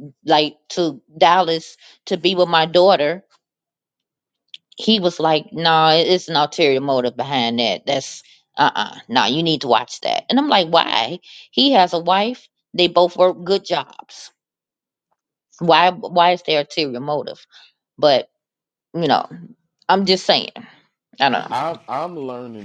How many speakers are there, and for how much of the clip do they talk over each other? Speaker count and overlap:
two, under 1%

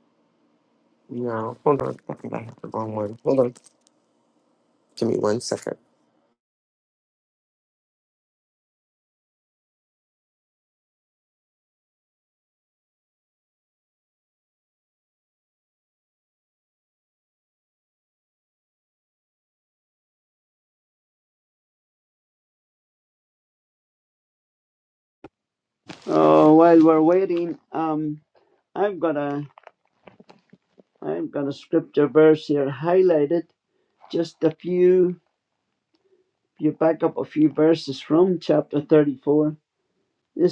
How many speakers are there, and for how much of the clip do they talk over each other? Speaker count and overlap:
two, no overlap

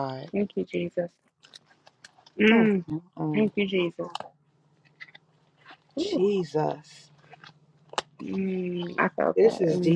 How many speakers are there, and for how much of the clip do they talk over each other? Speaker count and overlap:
two, about 12%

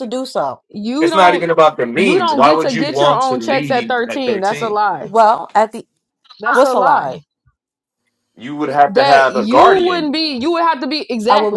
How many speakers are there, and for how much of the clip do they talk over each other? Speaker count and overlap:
three, about 46%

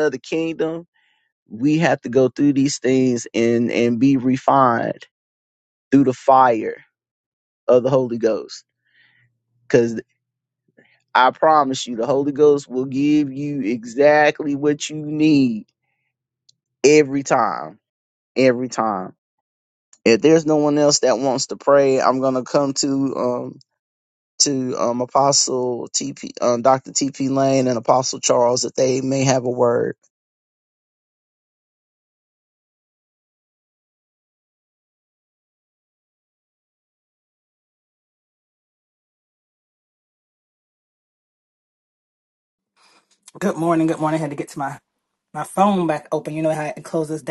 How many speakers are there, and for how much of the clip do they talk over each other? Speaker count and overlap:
two, no overlap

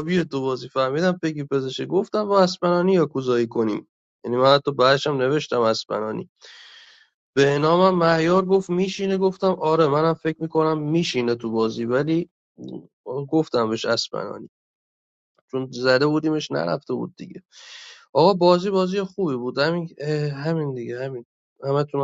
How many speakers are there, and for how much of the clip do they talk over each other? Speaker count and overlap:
one, no overlap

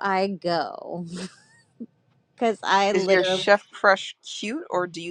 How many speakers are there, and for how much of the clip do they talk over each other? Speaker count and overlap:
two, about 10%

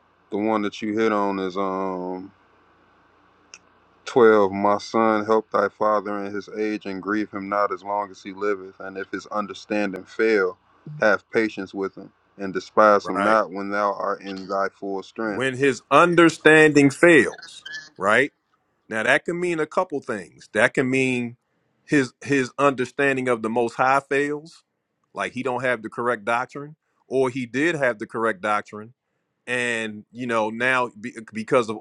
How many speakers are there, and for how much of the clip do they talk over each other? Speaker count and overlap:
two, about 1%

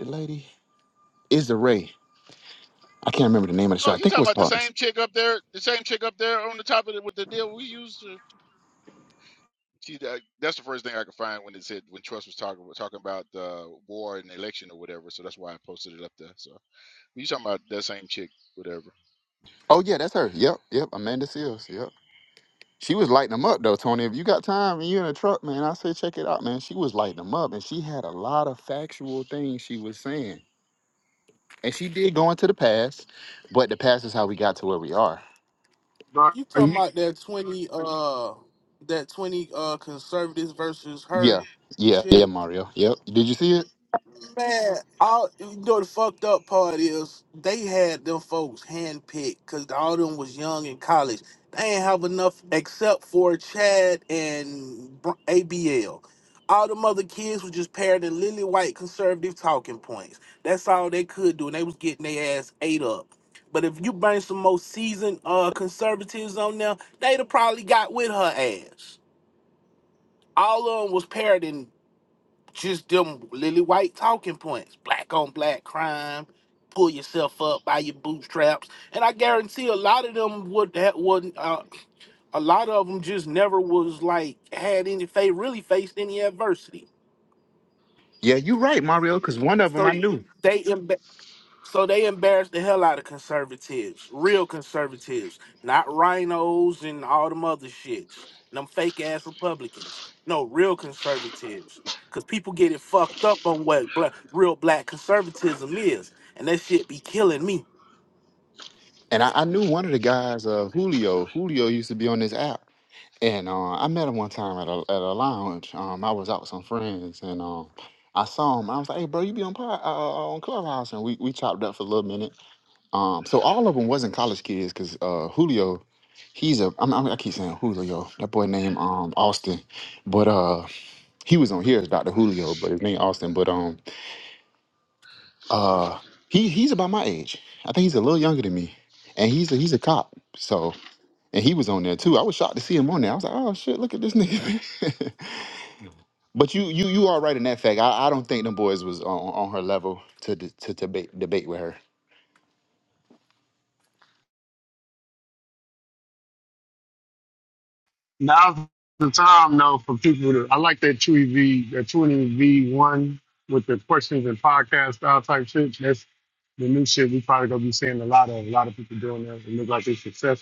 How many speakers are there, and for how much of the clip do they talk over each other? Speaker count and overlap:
four, about 1%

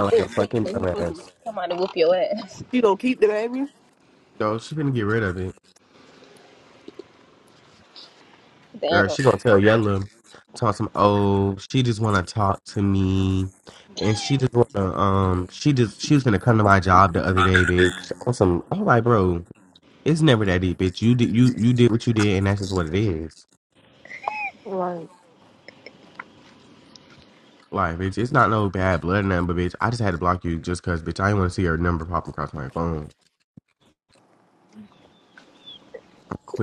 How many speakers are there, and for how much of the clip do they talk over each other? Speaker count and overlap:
three, about 4%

